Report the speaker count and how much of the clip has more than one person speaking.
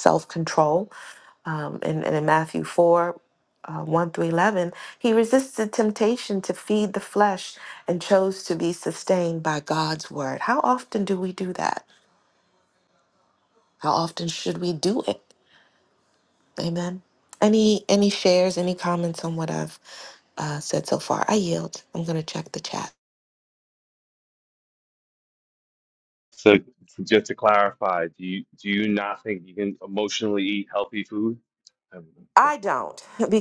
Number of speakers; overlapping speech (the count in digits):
2, no overlap